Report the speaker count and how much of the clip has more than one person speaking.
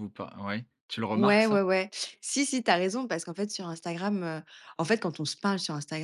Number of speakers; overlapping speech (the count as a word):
two, about 8%